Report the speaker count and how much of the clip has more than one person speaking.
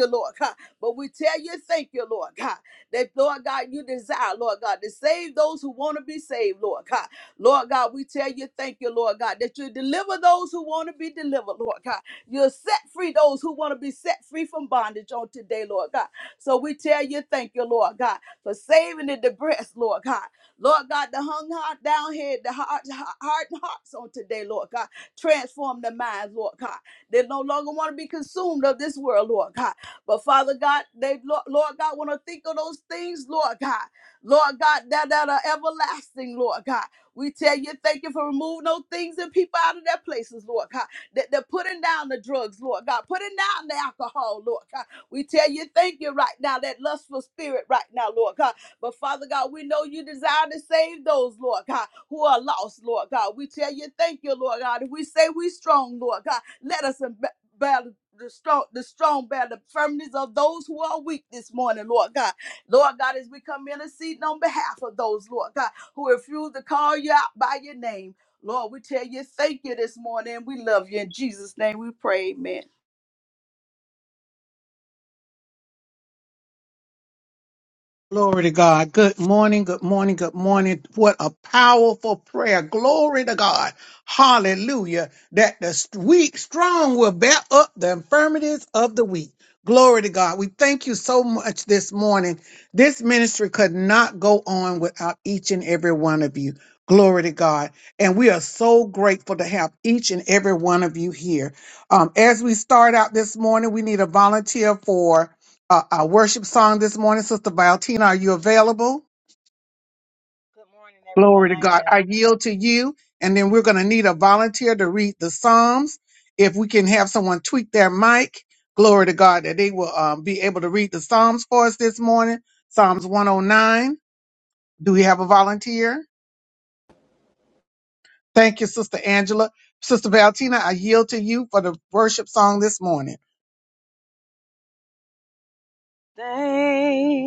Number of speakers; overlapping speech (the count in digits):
3, about 1%